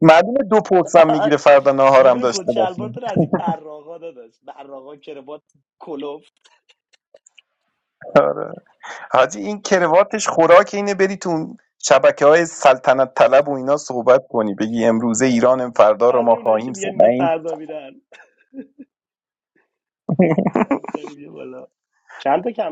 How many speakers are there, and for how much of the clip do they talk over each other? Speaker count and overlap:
2, about 9%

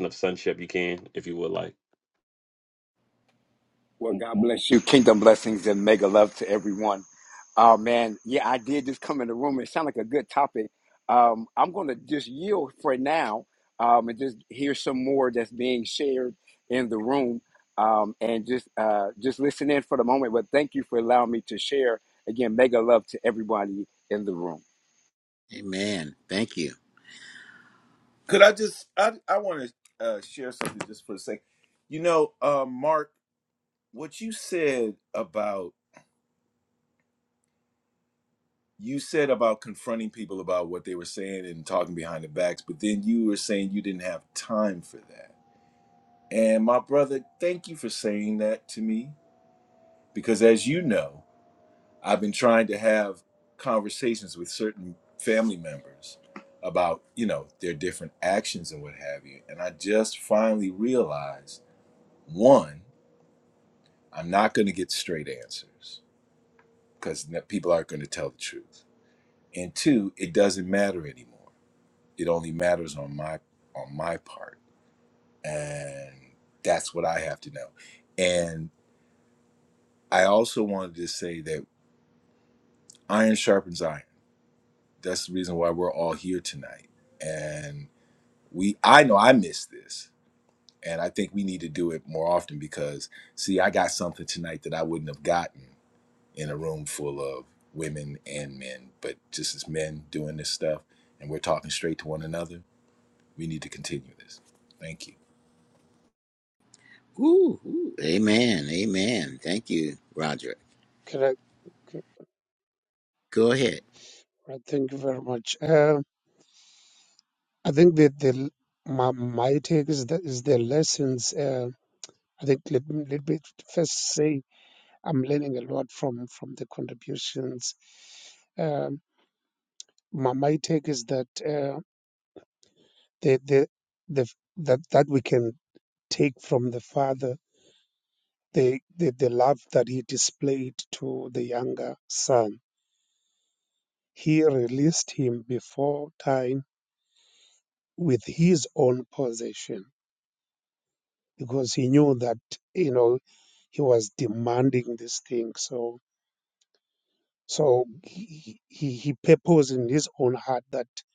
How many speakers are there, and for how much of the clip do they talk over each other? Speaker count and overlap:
5, no overlap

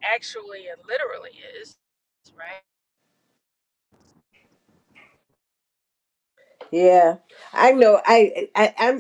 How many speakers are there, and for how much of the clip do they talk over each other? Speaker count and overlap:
2, no overlap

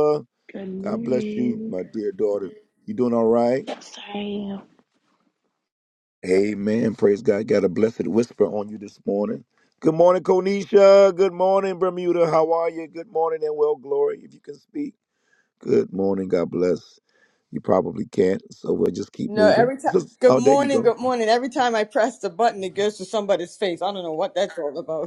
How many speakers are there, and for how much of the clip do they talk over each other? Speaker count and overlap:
3, about 10%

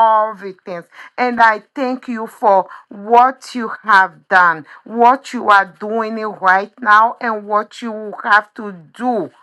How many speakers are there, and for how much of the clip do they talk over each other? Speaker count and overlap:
1, no overlap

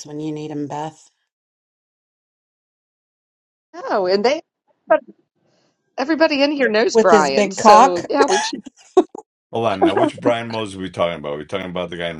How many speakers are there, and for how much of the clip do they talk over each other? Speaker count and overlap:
3, about 9%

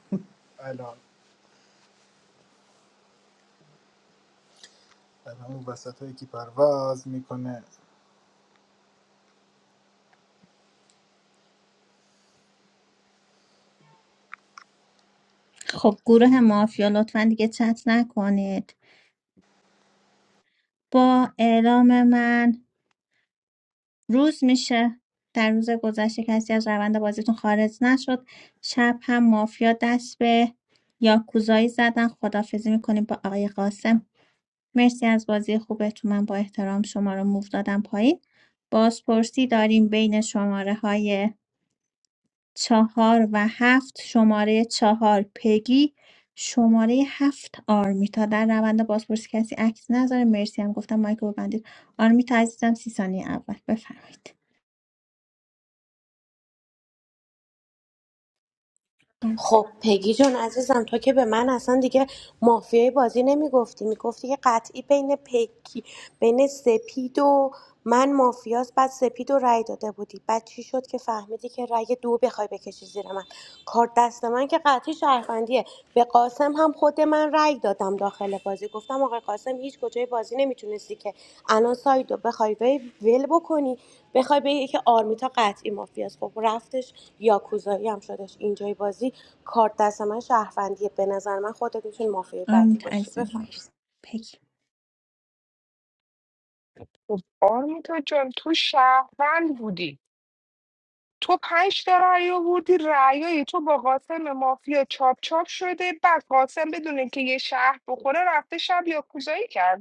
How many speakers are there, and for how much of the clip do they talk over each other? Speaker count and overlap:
4, about 1%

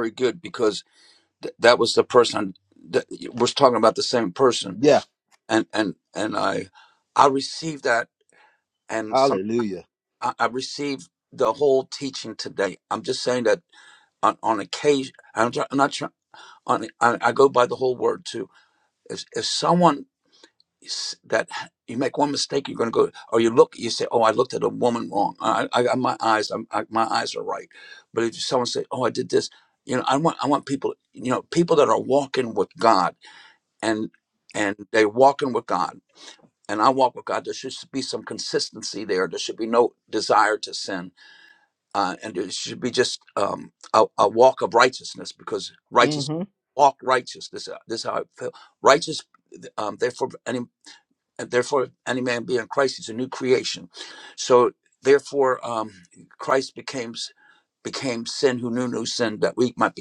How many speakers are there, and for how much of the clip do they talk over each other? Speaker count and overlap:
2, about 1%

